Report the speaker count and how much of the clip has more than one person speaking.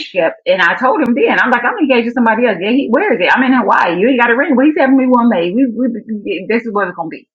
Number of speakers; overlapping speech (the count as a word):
one, no overlap